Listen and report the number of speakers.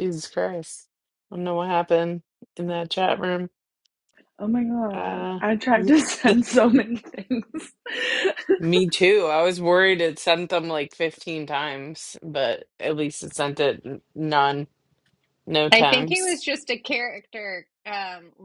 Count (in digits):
3